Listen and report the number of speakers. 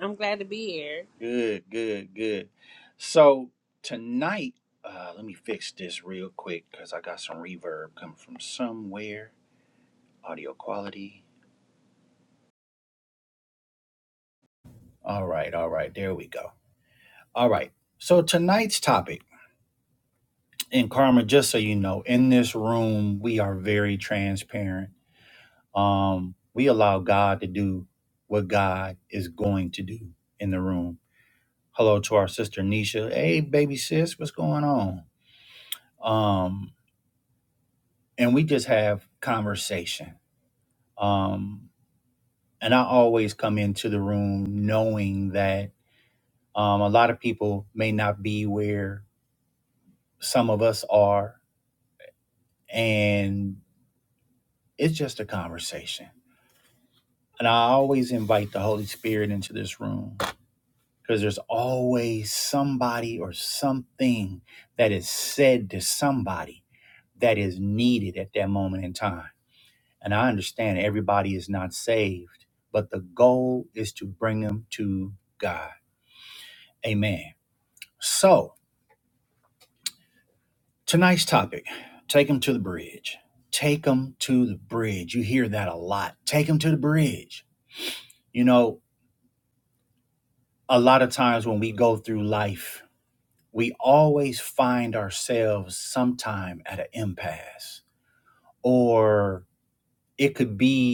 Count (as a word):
two